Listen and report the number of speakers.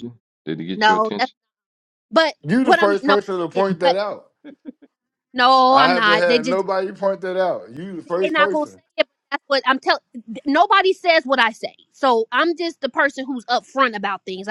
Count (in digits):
3